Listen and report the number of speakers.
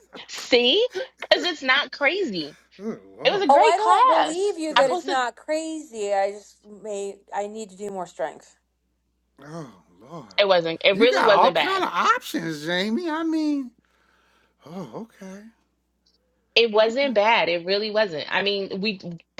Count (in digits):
3